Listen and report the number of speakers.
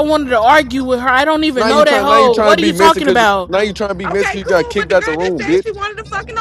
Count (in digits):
3